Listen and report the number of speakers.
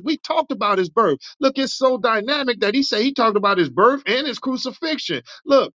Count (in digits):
1